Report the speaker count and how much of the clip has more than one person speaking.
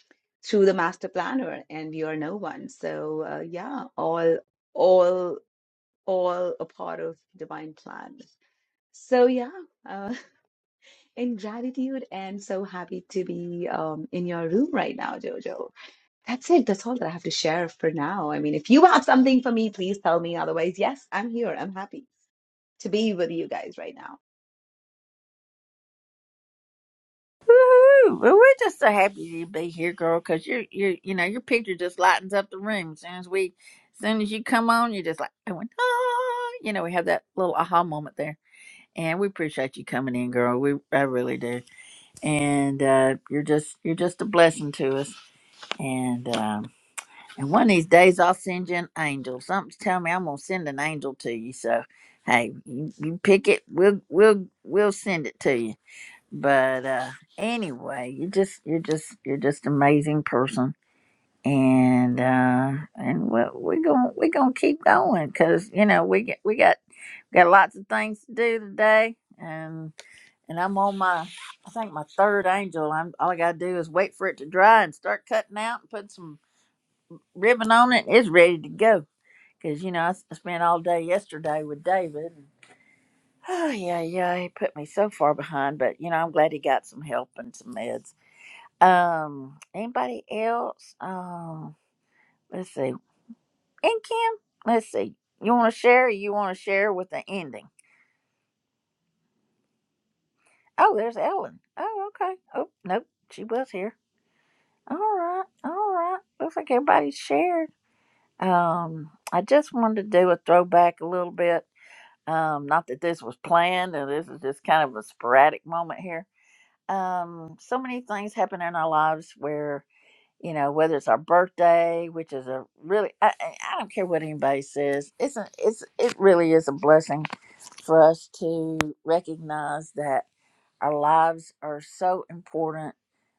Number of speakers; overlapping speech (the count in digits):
2, no overlap